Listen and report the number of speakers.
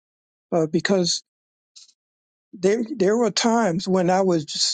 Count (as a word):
one